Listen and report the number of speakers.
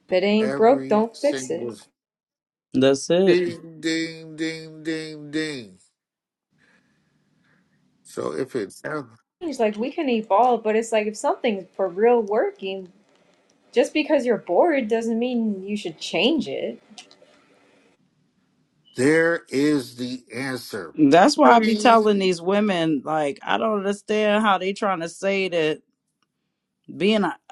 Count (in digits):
3